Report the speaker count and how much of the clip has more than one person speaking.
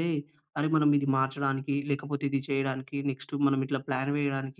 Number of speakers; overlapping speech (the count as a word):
one, no overlap